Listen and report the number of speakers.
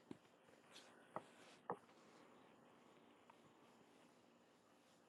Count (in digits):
0